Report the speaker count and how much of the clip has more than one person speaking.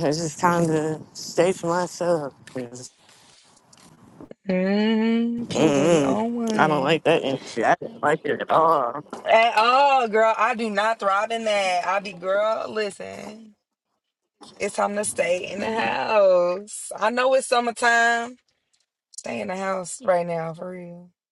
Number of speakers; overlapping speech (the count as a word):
two, about 6%